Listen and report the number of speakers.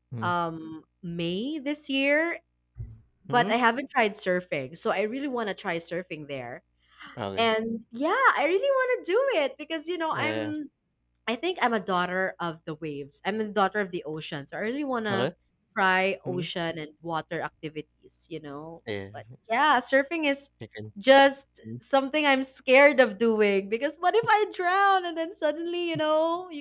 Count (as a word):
two